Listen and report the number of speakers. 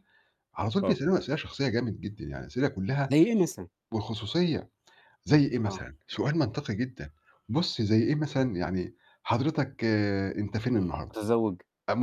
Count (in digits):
2